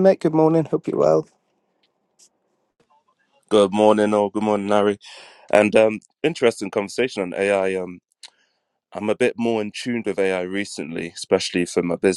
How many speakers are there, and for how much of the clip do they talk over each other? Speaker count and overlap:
two, no overlap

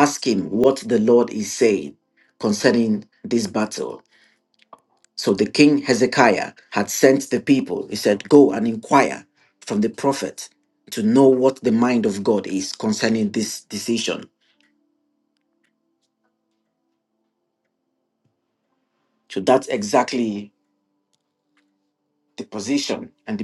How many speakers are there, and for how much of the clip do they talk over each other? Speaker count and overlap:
one, no overlap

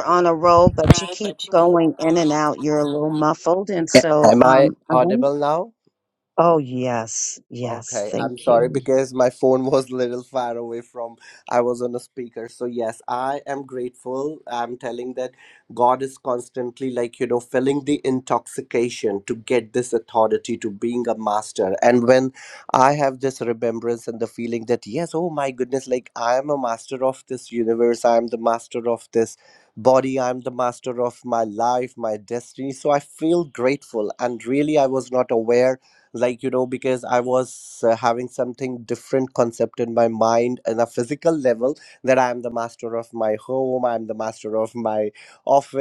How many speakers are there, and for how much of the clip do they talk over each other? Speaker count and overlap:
two, about 4%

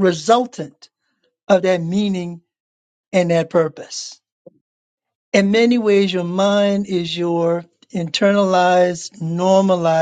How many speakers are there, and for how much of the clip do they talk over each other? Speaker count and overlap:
one, no overlap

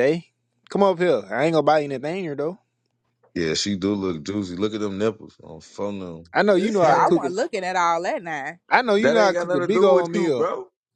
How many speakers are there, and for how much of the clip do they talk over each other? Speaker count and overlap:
three, about 20%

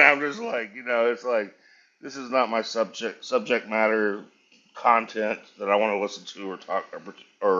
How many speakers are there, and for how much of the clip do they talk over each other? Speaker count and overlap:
one, no overlap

